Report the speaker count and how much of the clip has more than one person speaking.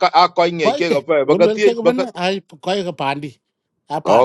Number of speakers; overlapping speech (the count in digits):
2, about 39%